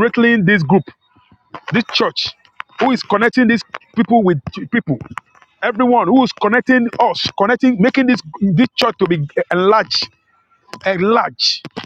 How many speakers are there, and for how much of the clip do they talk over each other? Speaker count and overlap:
1, no overlap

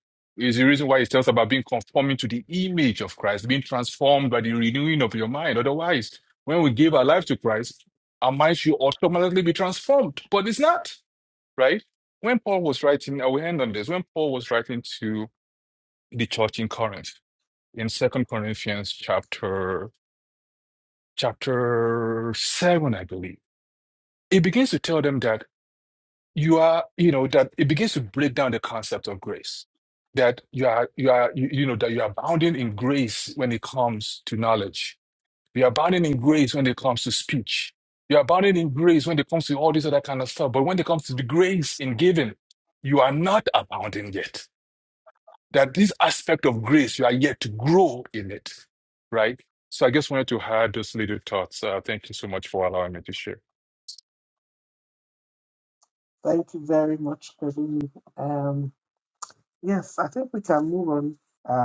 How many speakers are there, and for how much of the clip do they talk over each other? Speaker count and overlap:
2, no overlap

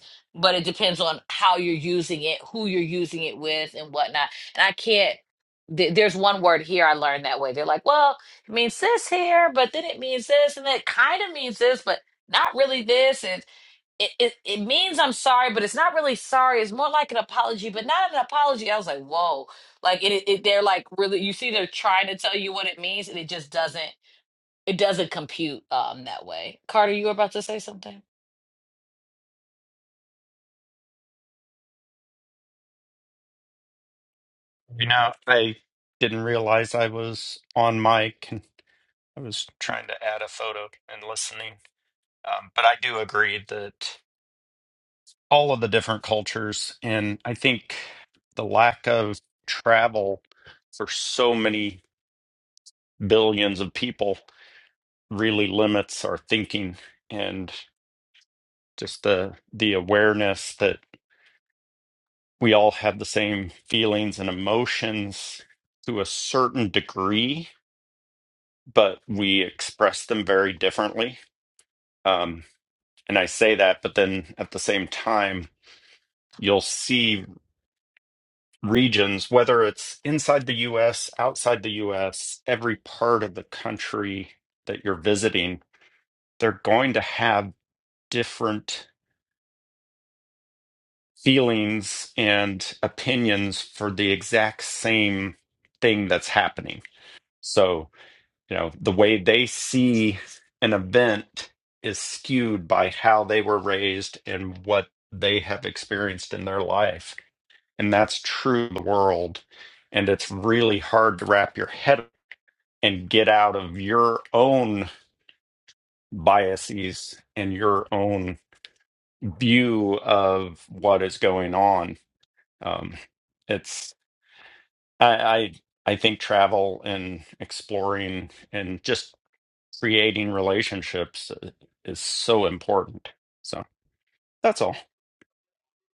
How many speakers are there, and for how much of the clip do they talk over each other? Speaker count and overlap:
2, no overlap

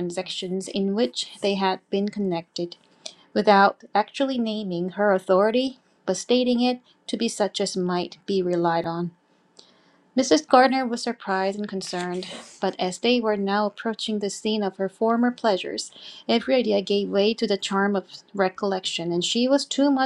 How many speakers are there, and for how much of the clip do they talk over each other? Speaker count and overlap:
1, no overlap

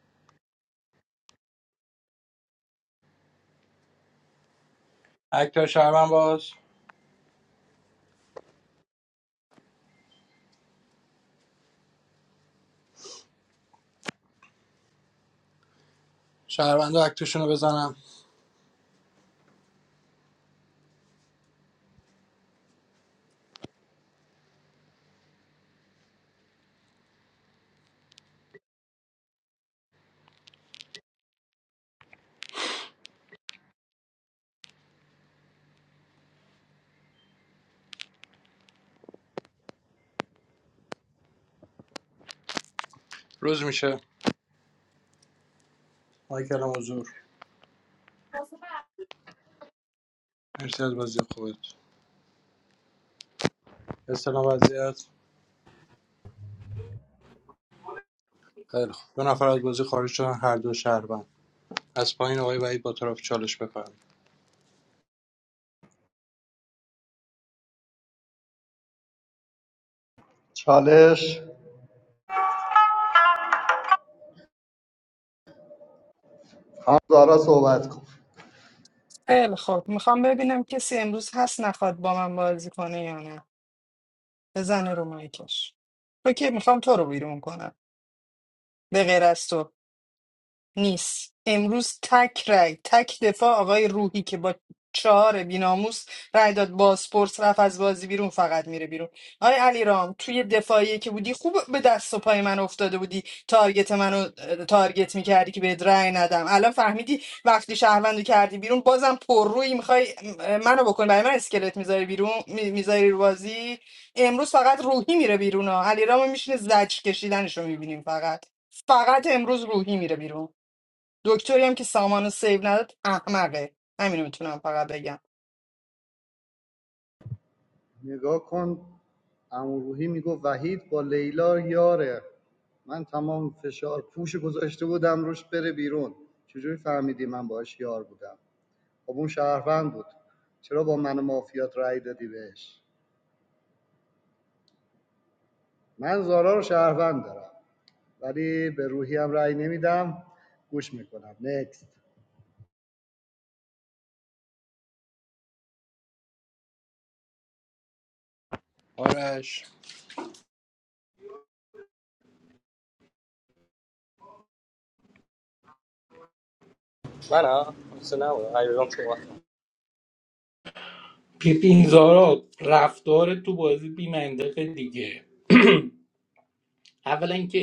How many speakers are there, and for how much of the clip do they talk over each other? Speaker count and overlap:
5, no overlap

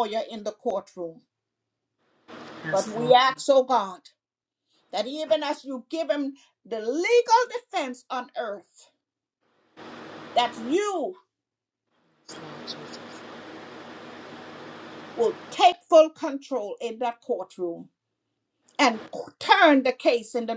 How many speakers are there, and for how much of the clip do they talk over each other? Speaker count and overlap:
2, about 2%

